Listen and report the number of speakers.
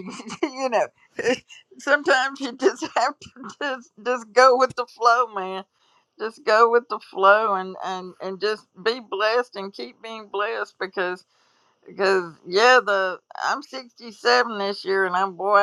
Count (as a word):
one